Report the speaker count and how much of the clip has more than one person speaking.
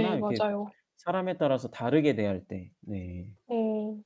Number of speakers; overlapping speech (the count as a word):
two, about 15%